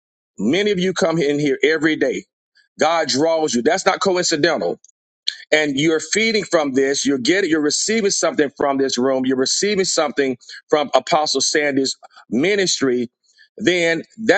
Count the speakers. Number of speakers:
one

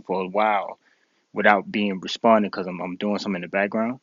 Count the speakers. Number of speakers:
one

